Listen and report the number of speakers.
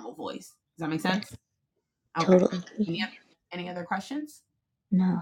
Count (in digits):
2